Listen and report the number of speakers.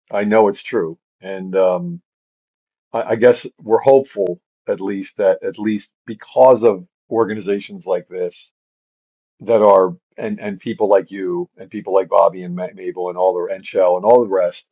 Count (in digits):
1